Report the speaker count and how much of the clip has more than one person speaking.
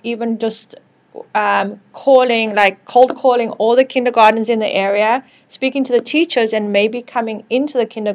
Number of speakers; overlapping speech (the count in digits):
1, no overlap